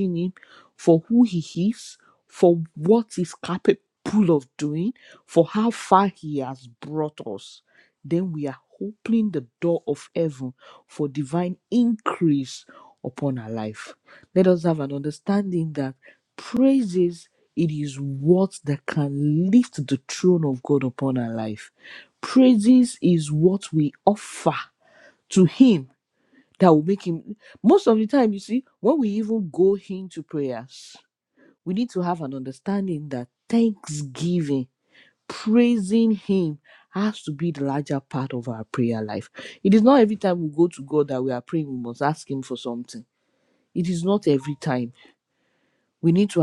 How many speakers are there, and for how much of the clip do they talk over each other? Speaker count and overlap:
1, no overlap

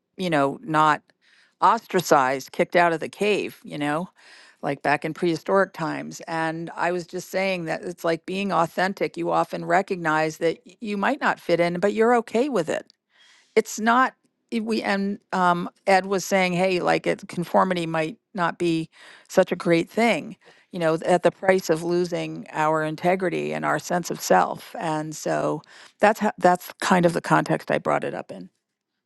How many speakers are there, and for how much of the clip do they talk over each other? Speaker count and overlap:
1, no overlap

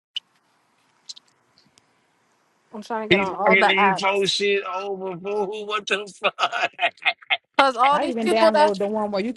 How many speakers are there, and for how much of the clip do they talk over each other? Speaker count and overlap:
3, about 18%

